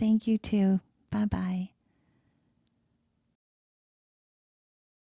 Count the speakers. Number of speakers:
one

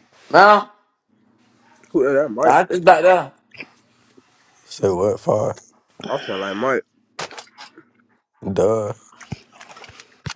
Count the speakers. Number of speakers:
three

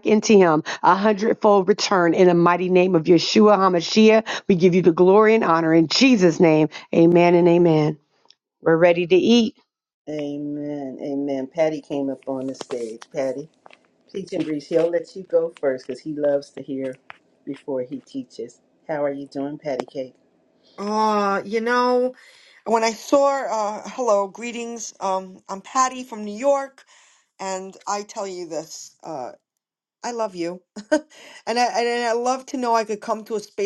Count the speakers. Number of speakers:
three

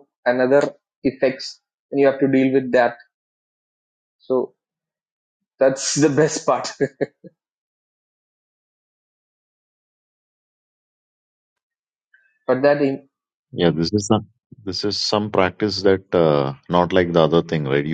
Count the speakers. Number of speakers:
two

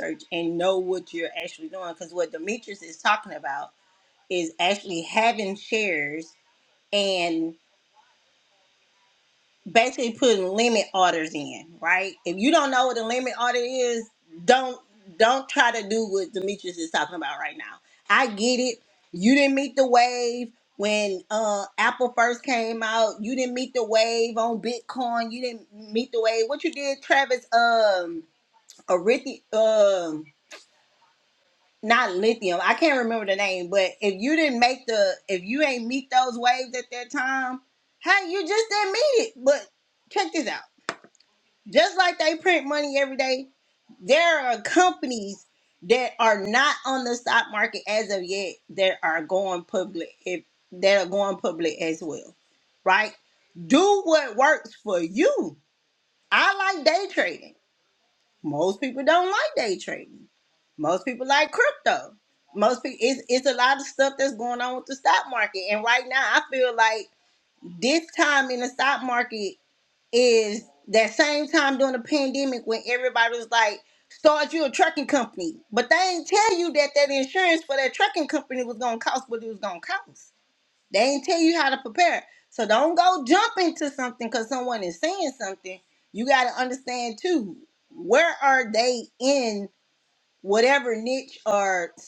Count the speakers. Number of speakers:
one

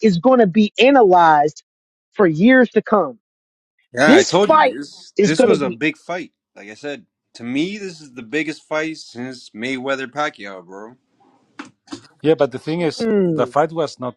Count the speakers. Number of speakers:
three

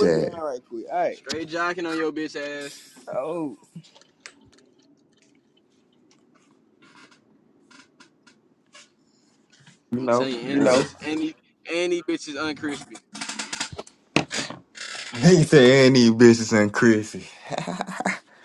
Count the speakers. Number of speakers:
three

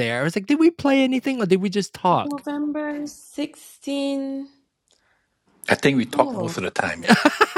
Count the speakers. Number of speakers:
three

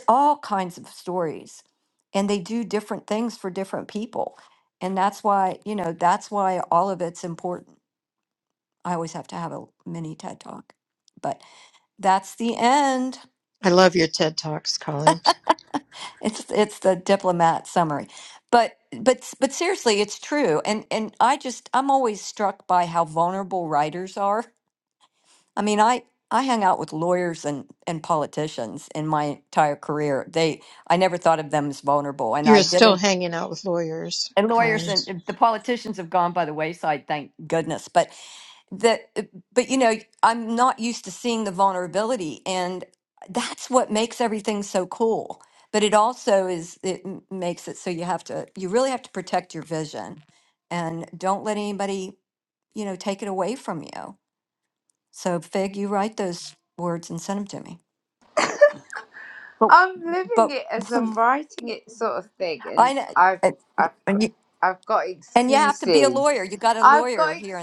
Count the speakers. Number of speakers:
three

